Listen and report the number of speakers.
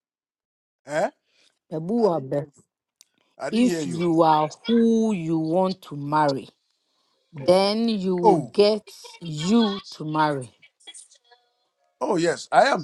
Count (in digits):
2